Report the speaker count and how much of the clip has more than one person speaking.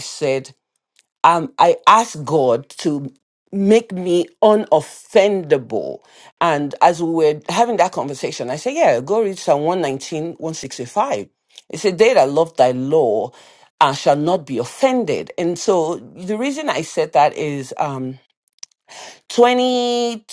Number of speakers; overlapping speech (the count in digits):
1, no overlap